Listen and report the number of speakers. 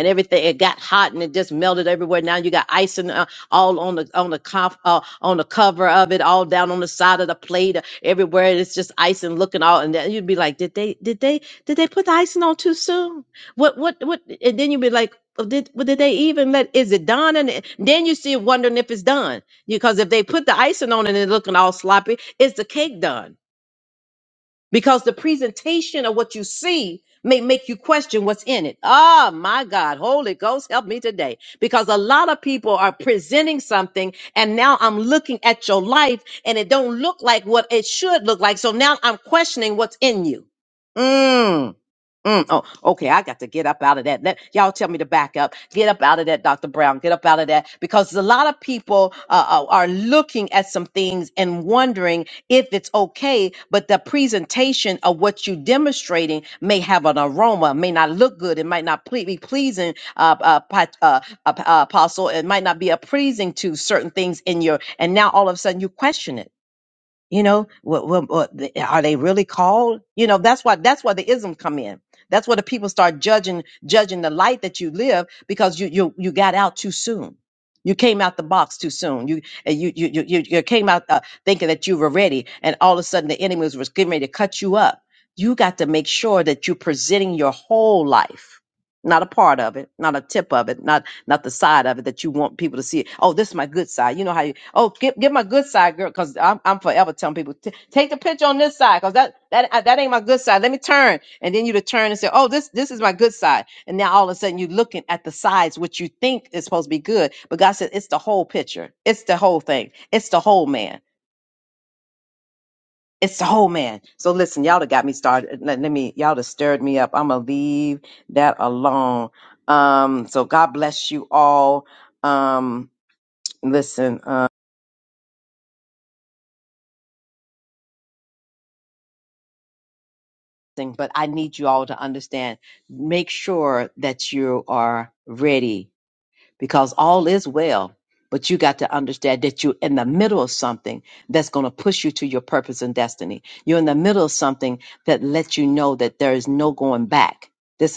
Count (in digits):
1